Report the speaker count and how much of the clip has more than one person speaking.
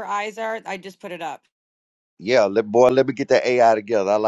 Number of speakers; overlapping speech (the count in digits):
2, no overlap